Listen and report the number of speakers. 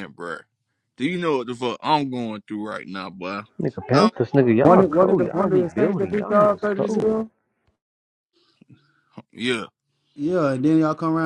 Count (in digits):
3